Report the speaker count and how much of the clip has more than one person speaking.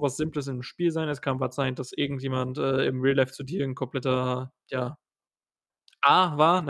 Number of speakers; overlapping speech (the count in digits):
1, no overlap